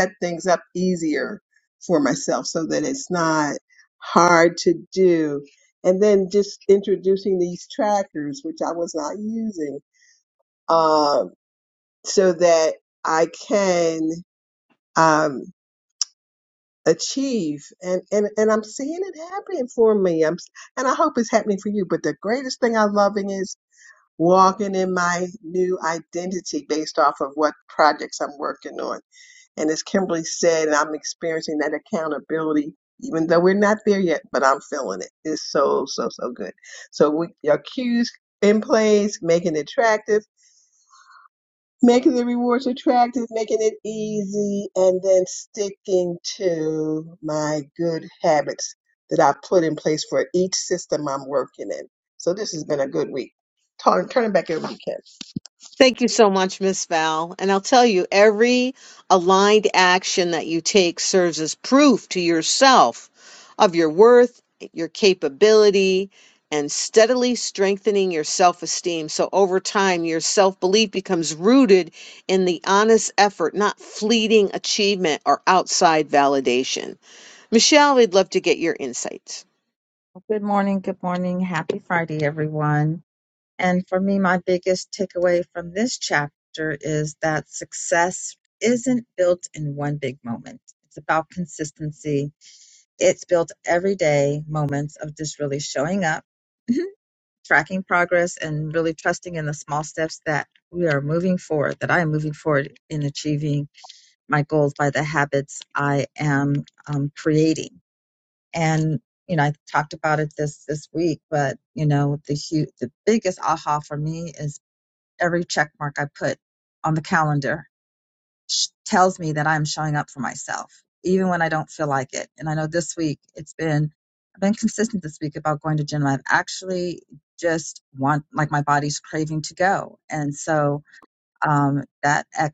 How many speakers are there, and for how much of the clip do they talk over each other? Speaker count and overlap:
3, no overlap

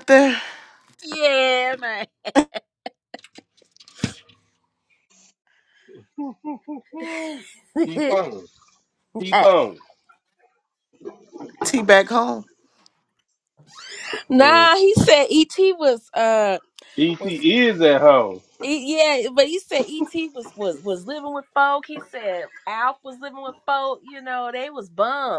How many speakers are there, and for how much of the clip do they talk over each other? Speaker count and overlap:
3, about 2%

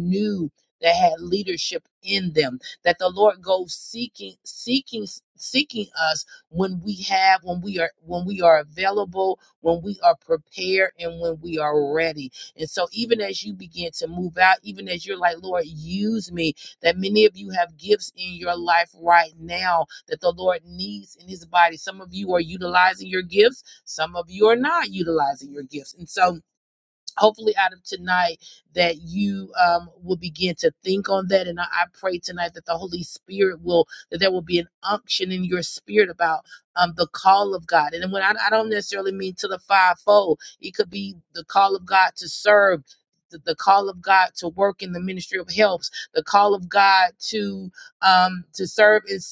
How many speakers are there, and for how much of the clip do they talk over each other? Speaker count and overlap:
1, no overlap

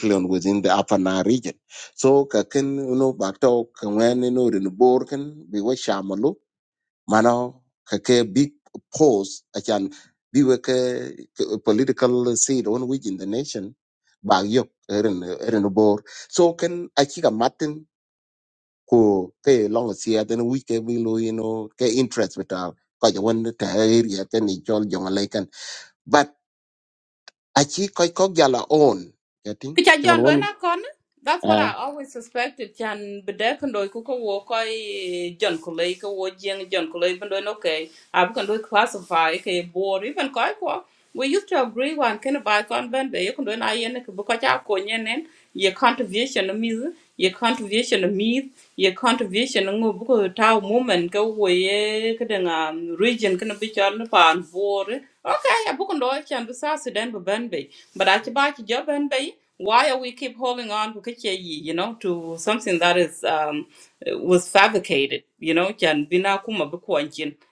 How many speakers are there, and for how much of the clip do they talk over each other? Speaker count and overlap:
2, about 1%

